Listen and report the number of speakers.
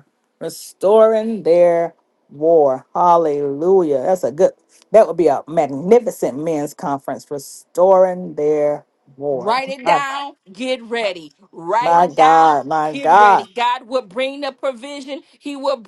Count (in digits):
2